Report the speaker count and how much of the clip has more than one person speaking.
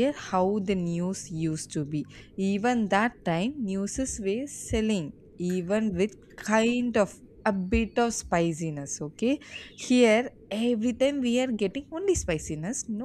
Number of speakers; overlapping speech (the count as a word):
one, no overlap